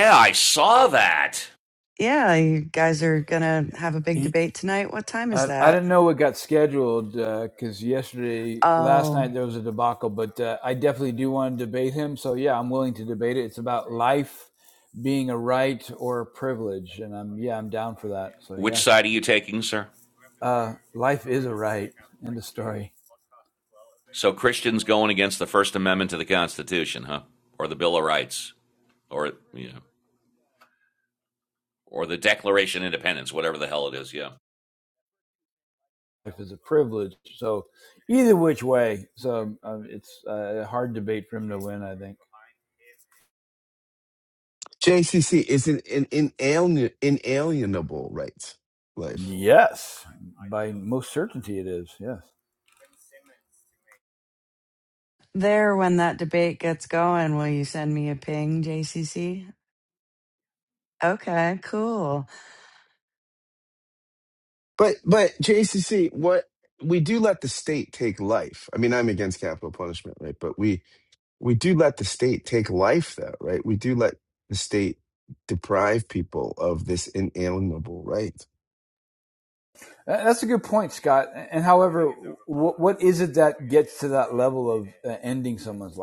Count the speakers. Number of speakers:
four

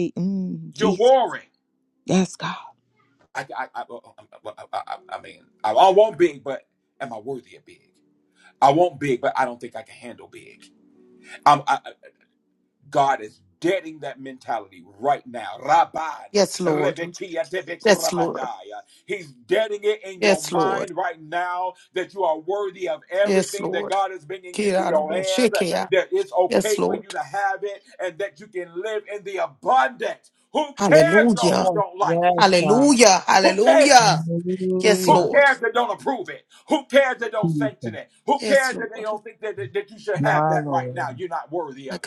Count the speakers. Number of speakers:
four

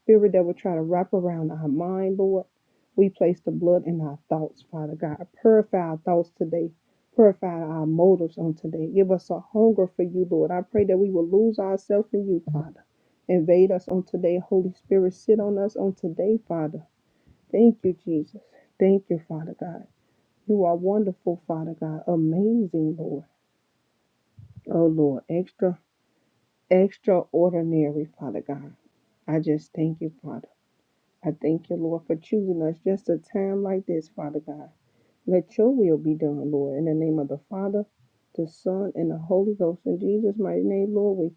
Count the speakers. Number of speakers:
one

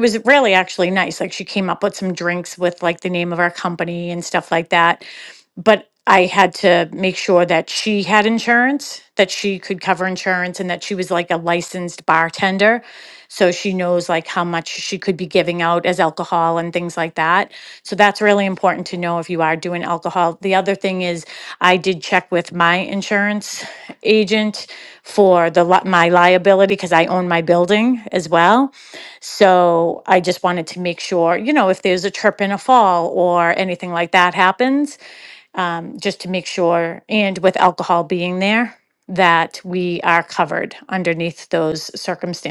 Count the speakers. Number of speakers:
one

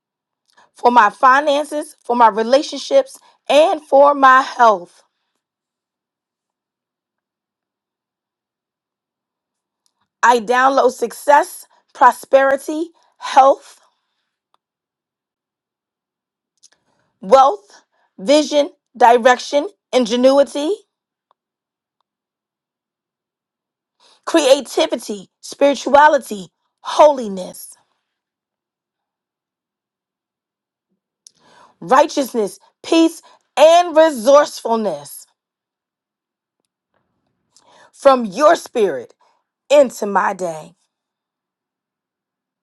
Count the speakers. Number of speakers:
one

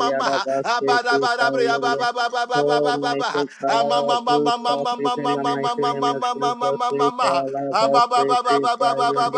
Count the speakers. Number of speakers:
two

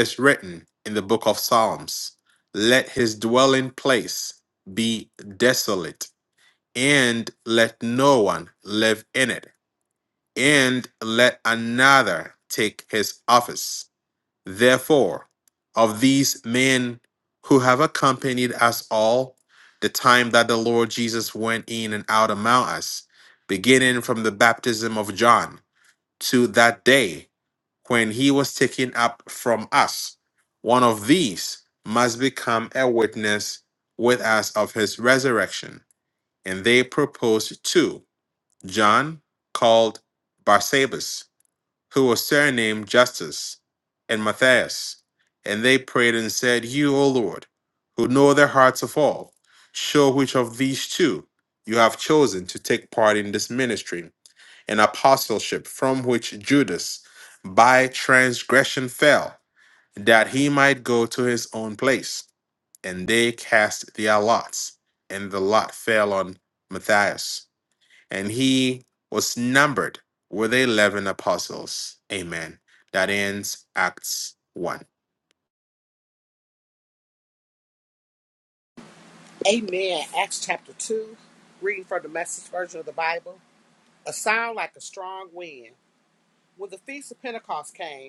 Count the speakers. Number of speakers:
two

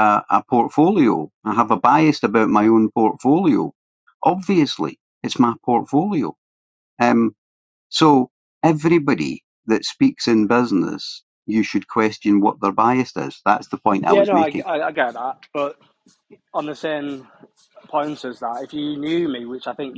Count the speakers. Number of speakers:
two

